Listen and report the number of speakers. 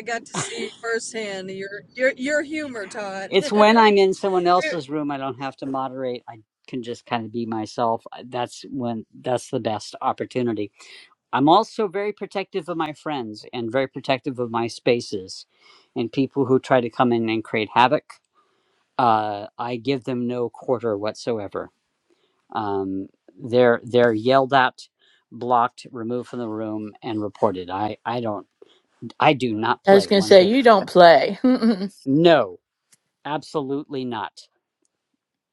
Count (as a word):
three